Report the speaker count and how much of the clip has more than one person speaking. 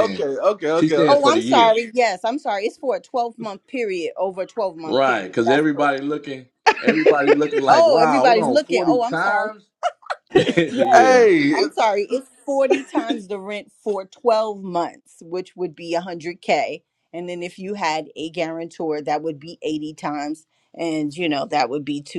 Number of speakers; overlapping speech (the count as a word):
three, about 22%